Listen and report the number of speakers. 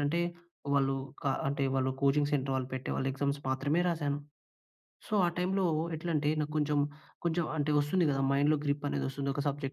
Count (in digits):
1